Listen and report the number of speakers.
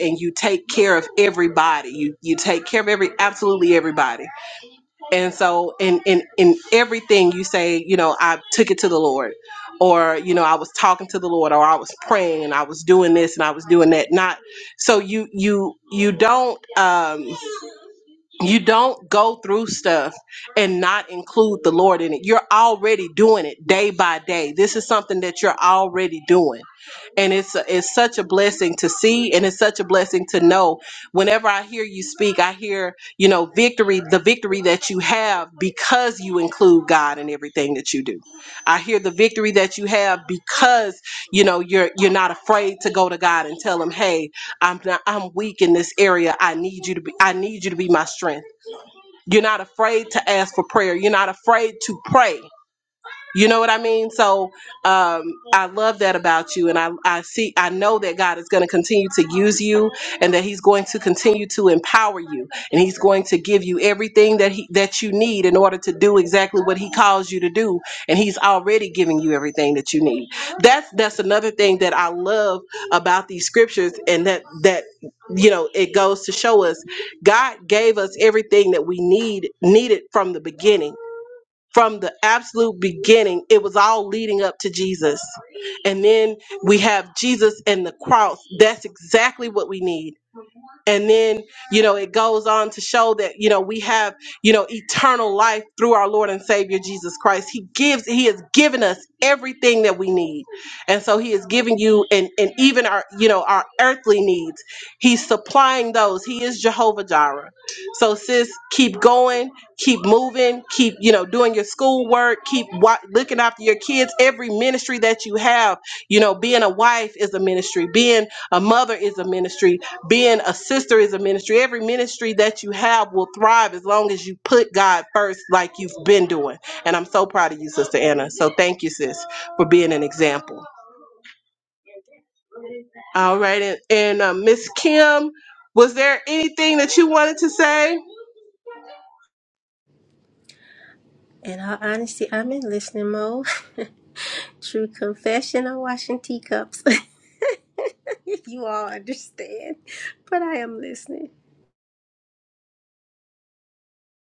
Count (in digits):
2